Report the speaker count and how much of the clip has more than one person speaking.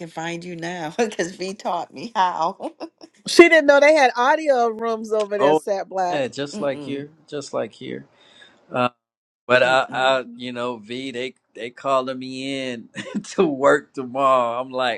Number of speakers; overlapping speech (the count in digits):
3, about 8%